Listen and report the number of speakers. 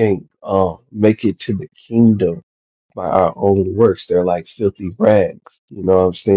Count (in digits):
1